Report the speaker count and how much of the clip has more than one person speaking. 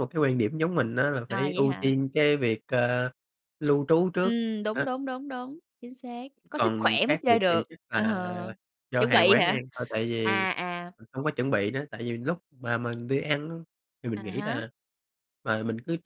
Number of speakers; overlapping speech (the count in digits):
2, about 21%